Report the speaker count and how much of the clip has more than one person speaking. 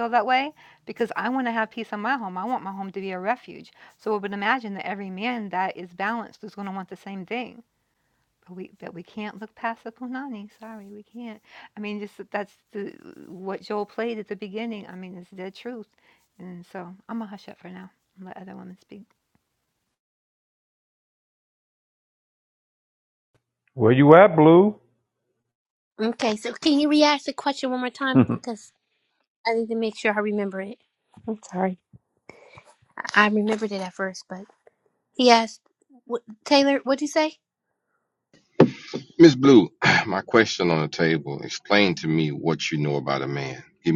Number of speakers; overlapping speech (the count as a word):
four, about 1%